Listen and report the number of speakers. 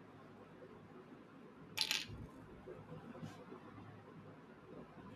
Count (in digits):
0